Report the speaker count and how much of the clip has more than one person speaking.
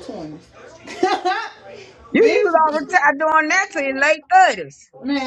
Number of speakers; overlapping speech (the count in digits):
2, about 15%